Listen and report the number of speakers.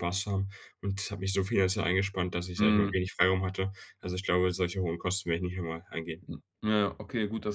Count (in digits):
2